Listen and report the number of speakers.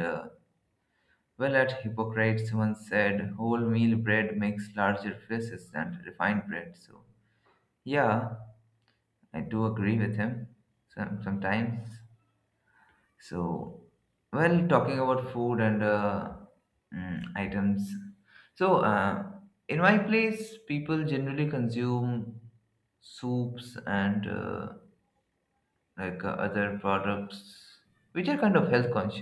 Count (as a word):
one